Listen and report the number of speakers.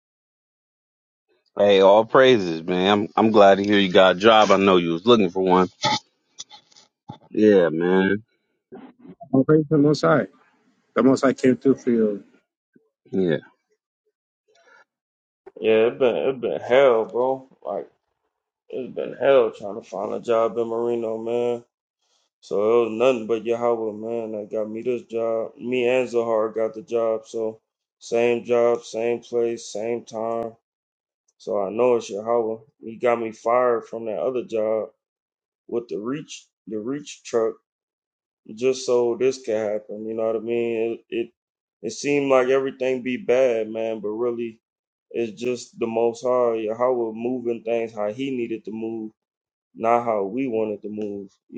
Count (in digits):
3